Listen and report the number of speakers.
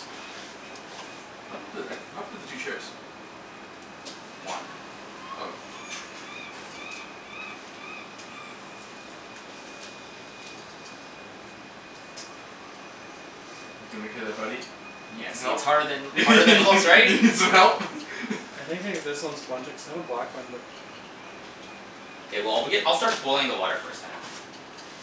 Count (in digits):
3